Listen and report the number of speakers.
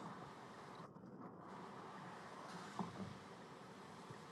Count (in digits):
0